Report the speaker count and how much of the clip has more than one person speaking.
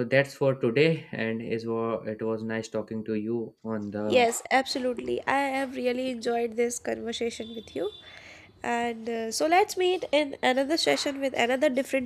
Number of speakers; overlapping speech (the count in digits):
2, about 2%